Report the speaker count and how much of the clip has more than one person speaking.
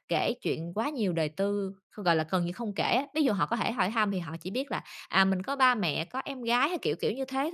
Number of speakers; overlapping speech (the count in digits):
1, no overlap